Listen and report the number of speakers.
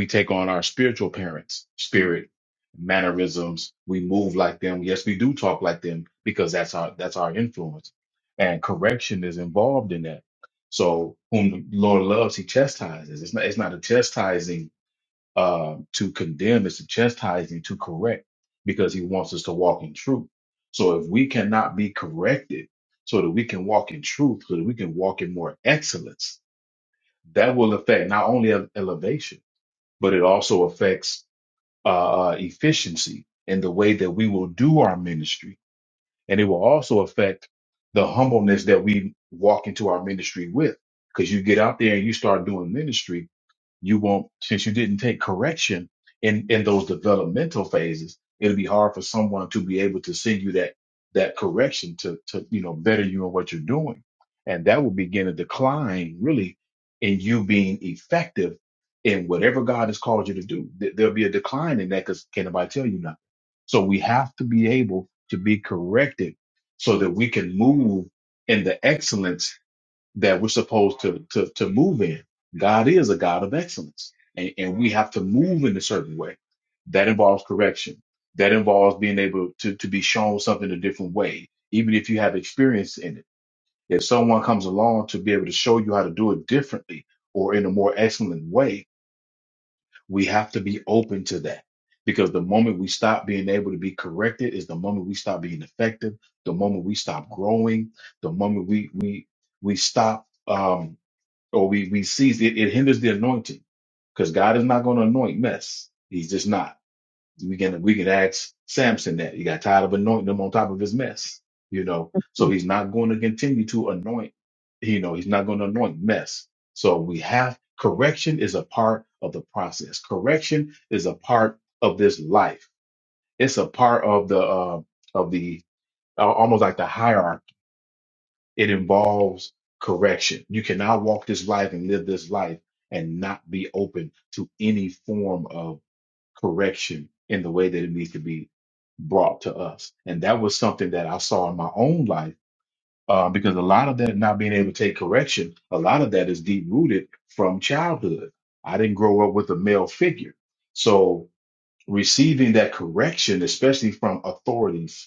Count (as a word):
one